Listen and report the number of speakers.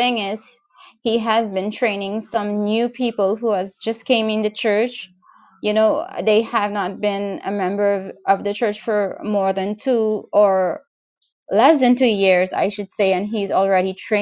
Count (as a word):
one